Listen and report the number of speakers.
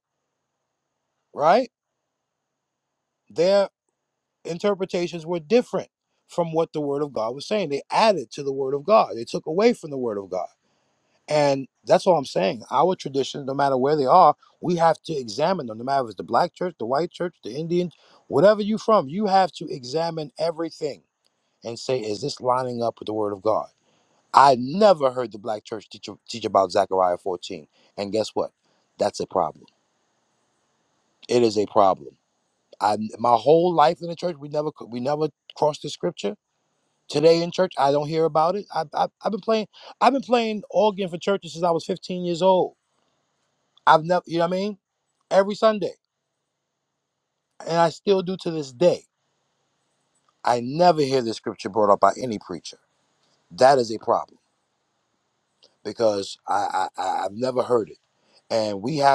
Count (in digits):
1